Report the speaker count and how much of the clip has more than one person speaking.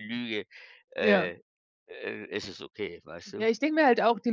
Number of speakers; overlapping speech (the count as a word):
two, about 7%